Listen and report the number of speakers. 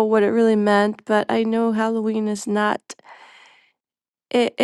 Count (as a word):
one